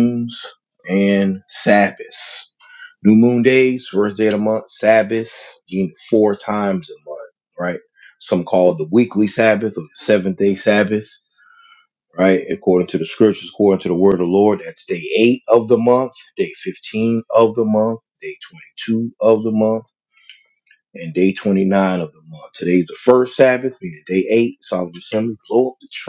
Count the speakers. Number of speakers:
1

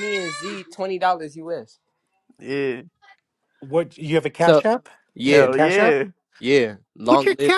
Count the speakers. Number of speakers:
3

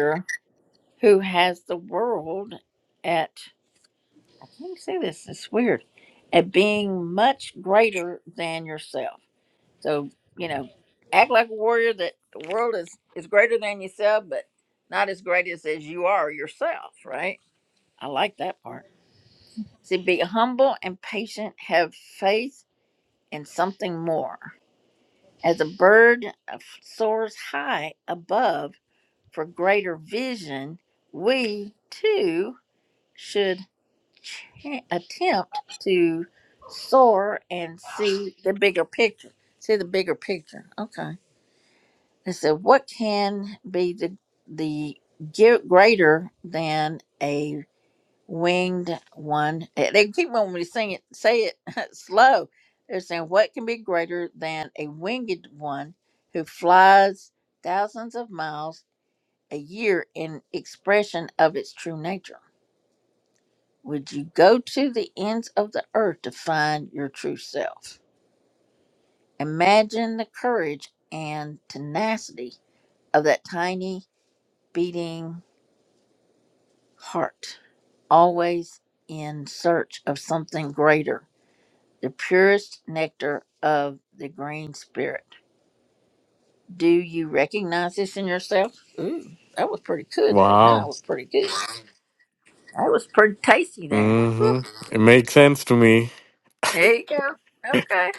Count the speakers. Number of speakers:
2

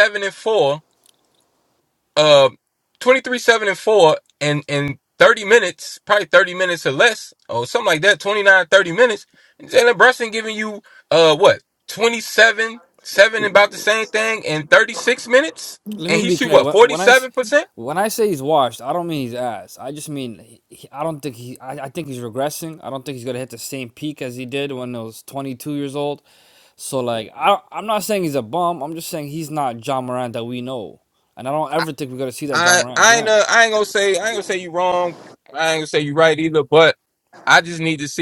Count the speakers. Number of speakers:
2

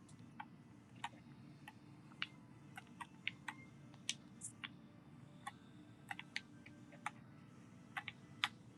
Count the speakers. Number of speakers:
0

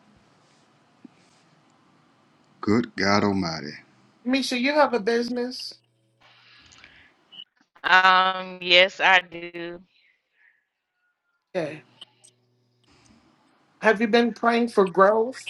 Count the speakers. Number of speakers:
3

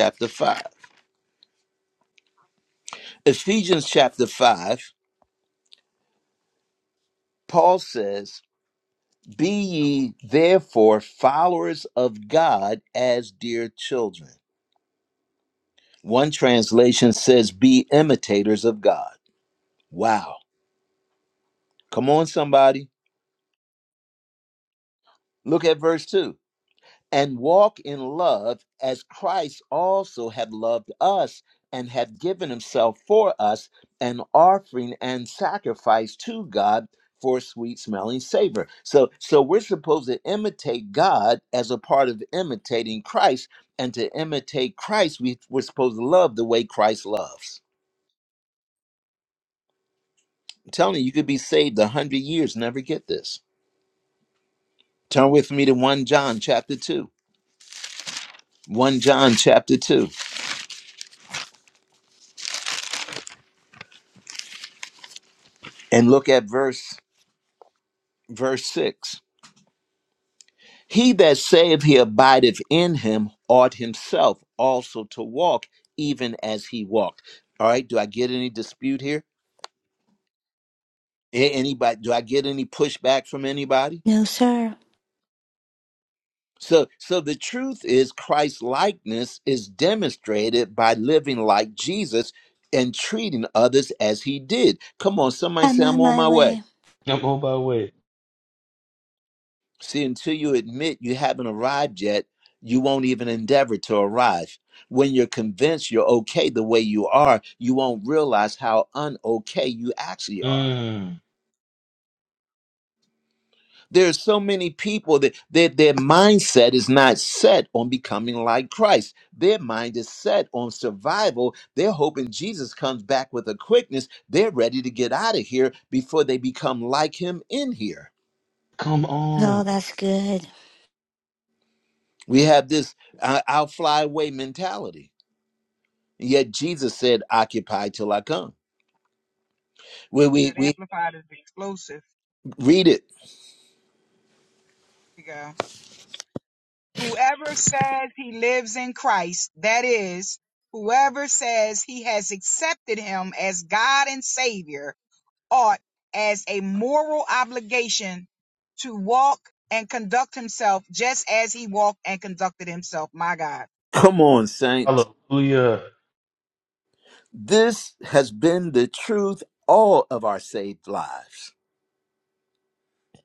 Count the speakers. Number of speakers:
4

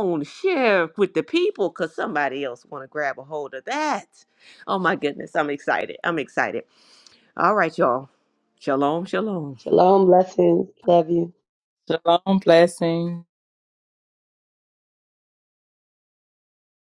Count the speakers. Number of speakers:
3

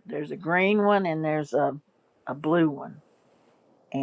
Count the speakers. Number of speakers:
1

